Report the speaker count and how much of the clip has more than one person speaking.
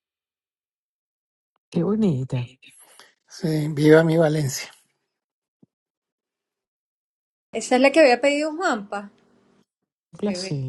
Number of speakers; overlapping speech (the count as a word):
three, about 2%